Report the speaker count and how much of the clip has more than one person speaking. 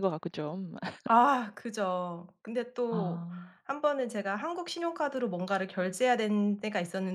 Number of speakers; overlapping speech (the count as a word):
two, about 4%